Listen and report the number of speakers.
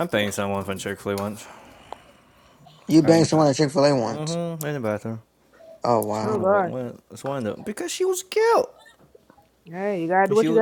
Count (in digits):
3